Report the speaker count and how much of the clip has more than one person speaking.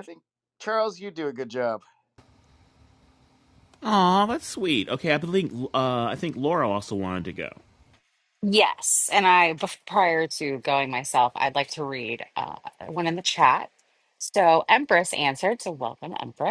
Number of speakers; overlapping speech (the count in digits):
3, no overlap